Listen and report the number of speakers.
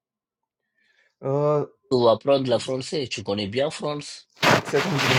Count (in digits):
2